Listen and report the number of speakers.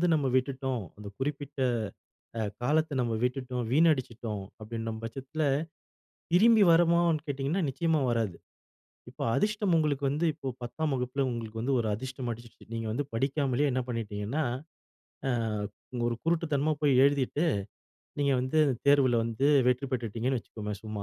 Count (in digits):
1